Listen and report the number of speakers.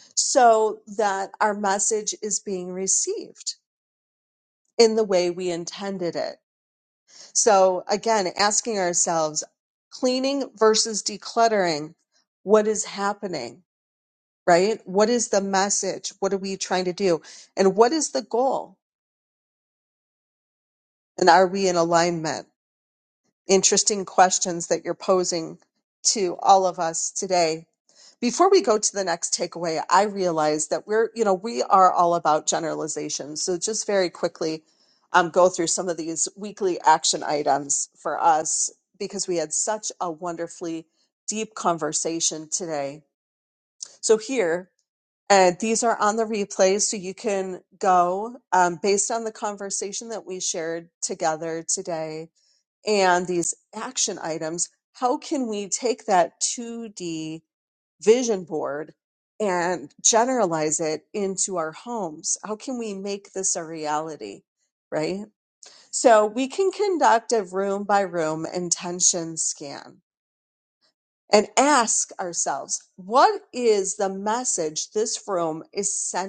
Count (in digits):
1